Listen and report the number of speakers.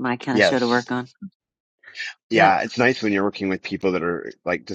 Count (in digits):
2